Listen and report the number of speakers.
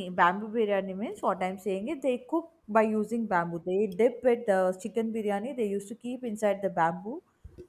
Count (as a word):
one